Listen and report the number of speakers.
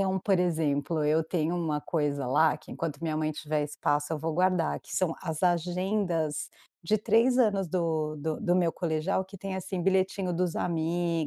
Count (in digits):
1